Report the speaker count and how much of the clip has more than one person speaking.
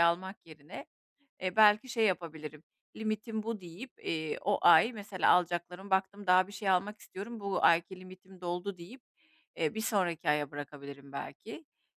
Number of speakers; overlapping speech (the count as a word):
one, no overlap